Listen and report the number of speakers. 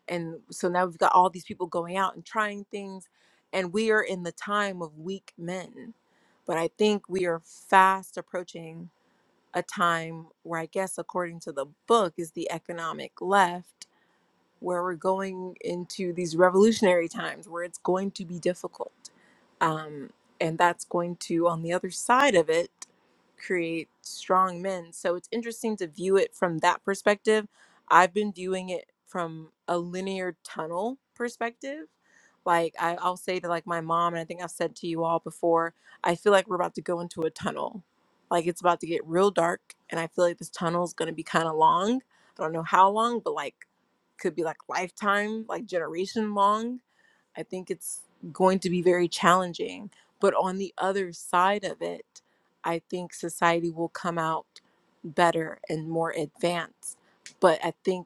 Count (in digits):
1